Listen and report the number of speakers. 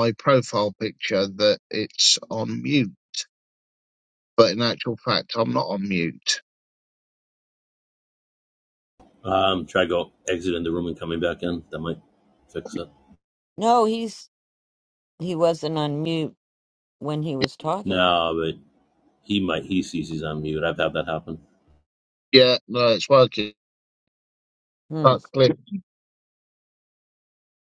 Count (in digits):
3